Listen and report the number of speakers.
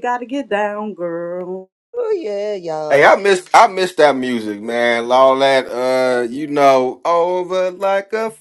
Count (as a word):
three